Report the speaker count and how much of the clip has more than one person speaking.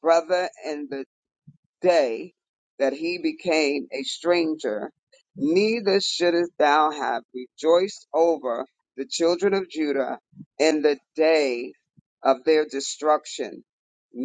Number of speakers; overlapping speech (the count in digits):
1, no overlap